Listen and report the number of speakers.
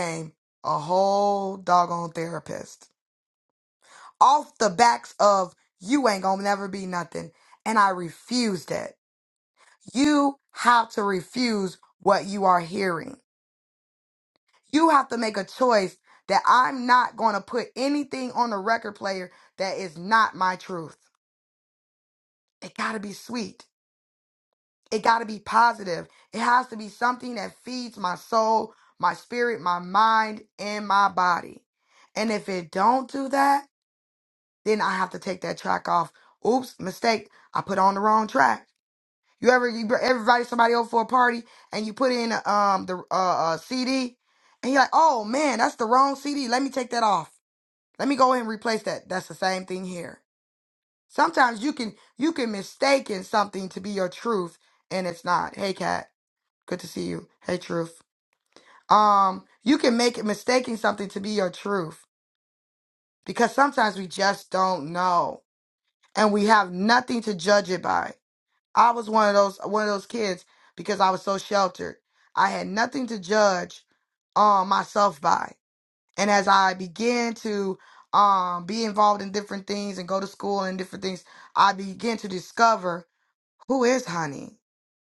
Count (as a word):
one